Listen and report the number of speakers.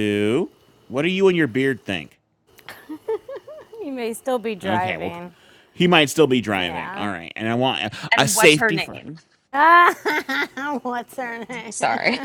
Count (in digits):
3